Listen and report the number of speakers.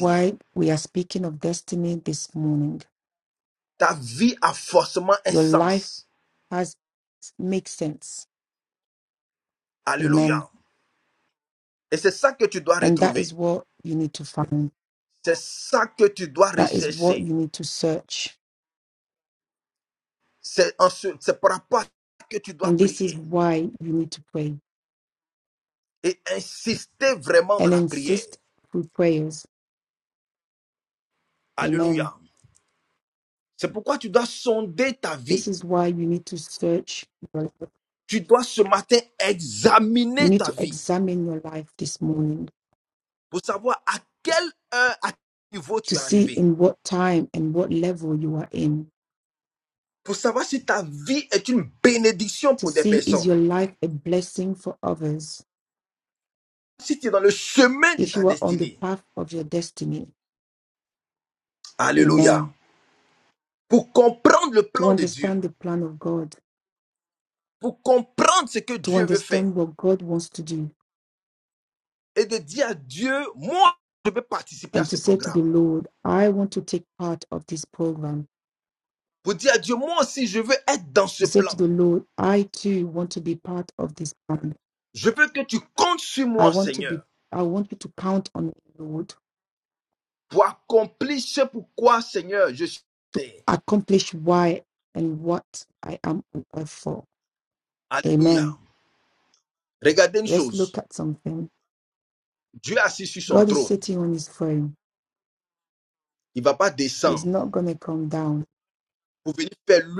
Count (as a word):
two